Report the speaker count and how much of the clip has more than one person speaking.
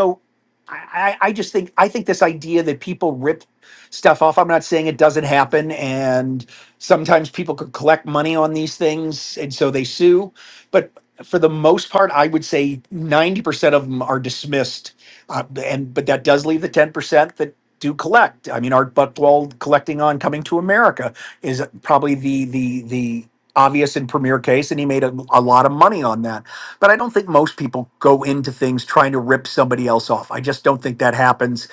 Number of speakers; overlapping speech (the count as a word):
one, no overlap